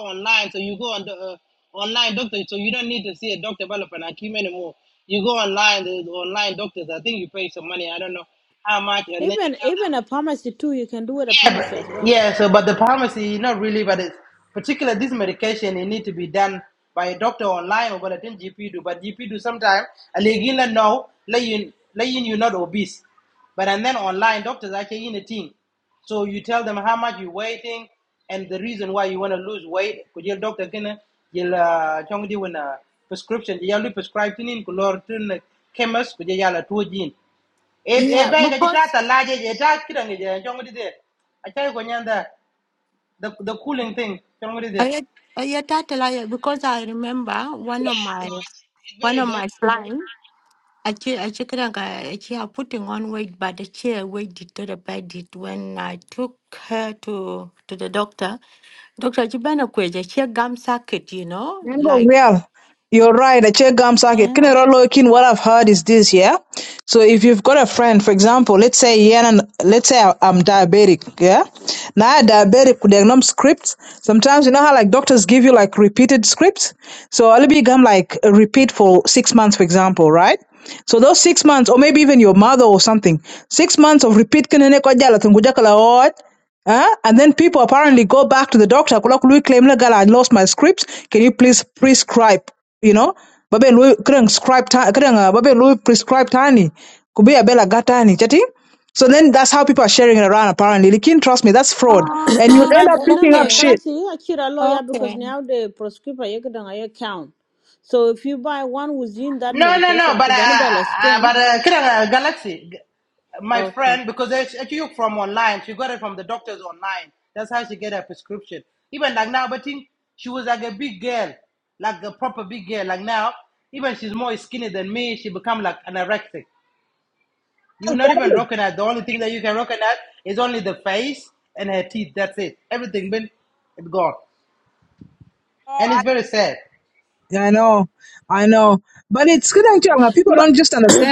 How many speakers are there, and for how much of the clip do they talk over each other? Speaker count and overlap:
4, about 6%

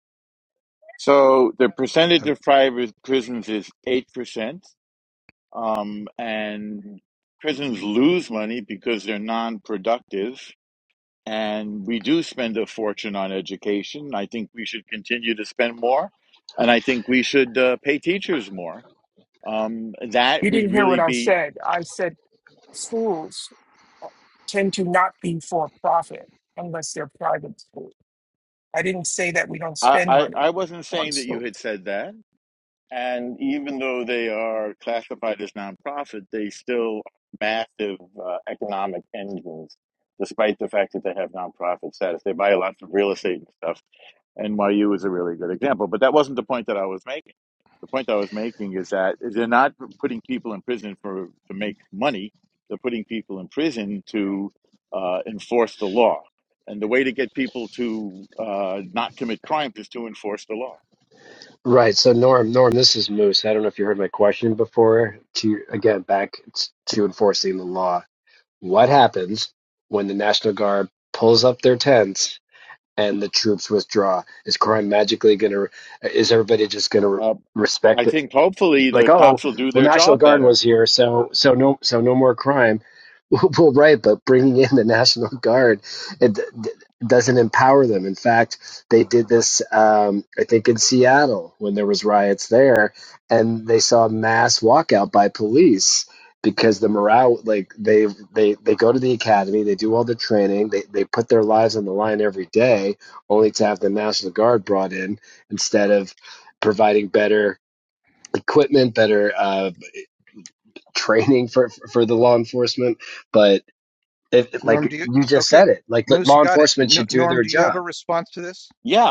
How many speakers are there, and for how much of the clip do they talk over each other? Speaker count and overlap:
4, about 5%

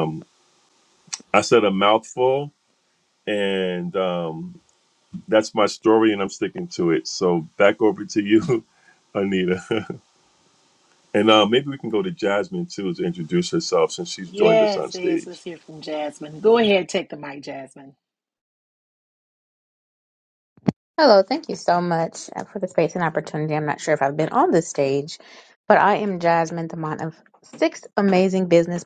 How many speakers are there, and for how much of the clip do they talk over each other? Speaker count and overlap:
3, about 3%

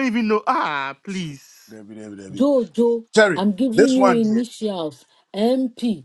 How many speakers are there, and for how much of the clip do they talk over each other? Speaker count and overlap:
3, about 14%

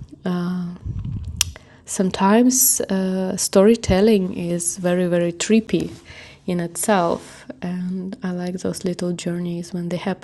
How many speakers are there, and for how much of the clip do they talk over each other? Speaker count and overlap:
1, no overlap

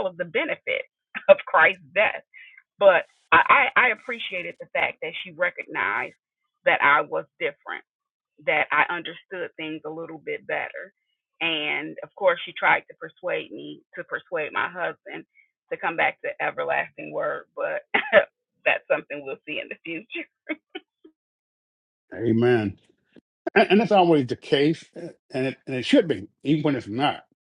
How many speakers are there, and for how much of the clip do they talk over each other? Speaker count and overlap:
2, no overlap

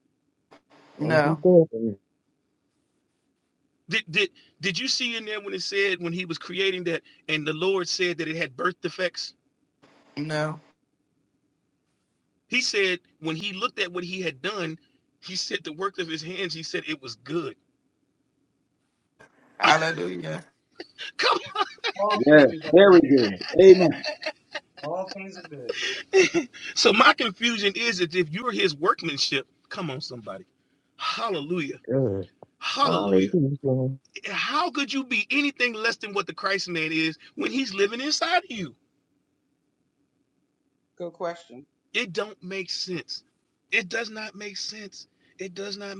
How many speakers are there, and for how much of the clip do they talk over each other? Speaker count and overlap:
5, about 4%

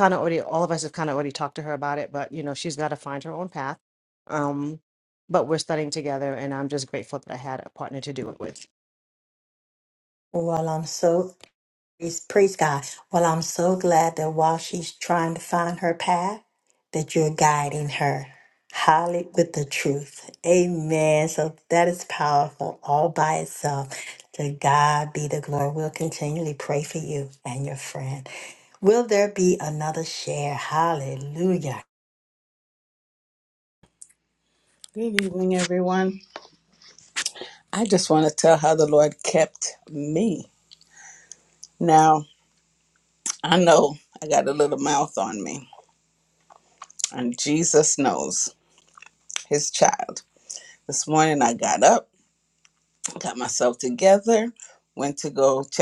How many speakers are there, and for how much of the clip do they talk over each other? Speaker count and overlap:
3, no overlap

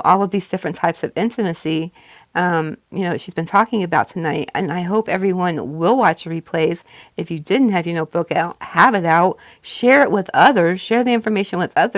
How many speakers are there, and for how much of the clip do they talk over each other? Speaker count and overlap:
1, no overlap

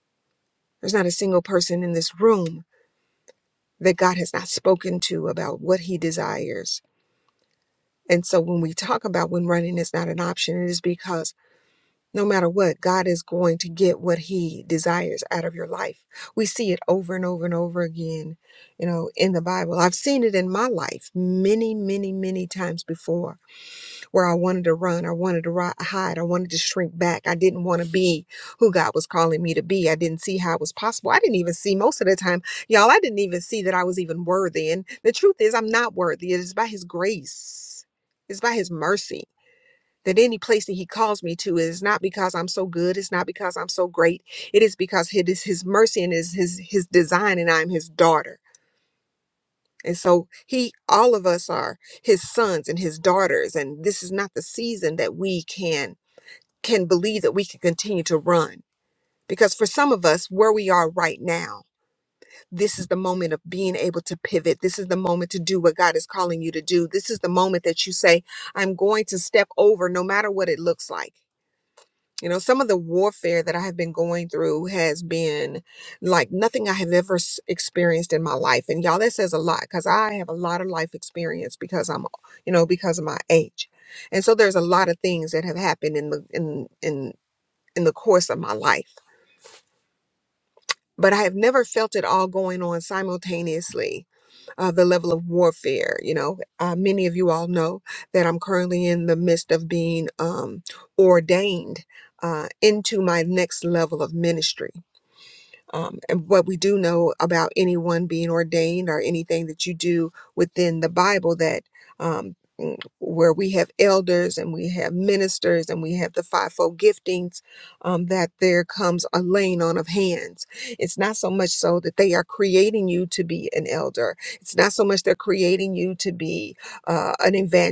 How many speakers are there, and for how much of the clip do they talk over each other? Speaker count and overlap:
1, no overlap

